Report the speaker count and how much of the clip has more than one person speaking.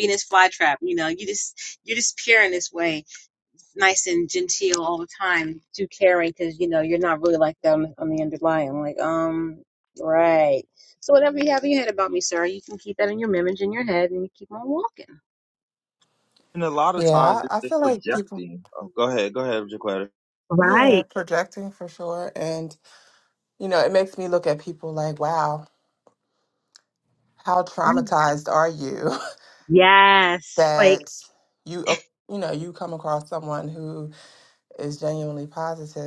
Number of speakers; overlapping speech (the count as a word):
three, about 7%